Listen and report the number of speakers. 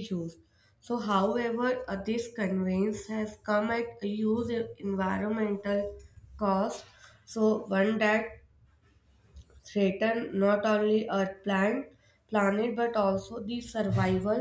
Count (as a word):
one